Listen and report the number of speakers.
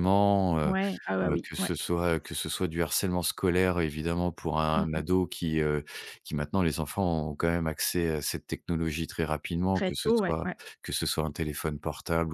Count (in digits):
2